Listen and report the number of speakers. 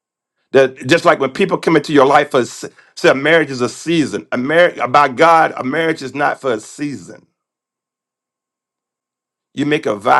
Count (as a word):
one